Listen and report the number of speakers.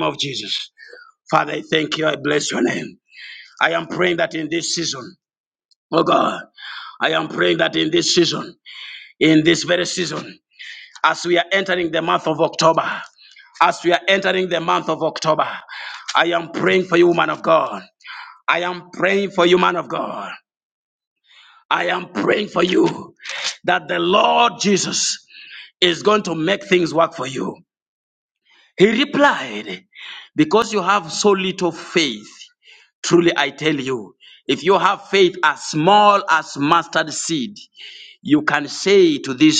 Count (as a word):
one